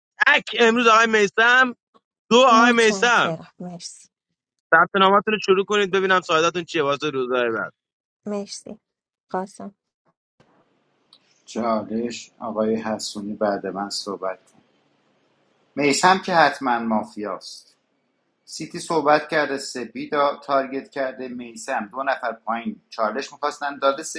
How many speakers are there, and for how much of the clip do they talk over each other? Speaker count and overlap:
3, about 3%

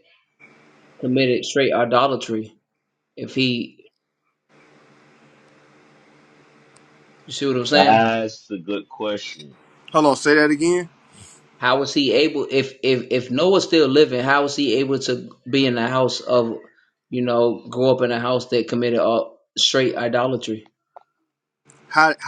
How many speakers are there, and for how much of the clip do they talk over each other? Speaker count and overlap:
3, about 1%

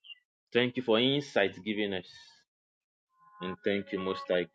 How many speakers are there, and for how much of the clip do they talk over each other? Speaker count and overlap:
1, no overlap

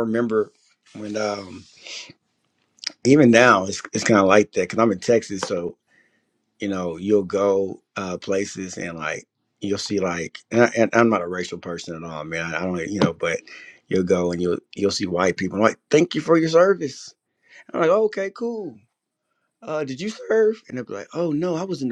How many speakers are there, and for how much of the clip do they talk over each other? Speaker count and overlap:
1, no overlap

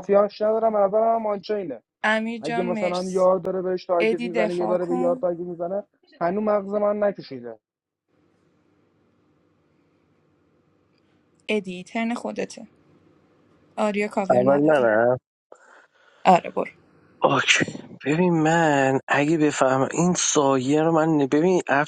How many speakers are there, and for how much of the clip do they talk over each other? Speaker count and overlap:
3, about 11%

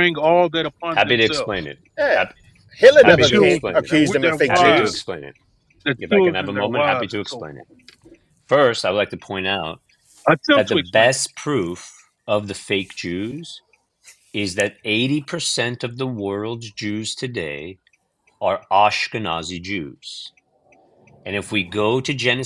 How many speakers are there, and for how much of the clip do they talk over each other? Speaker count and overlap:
3, about 21%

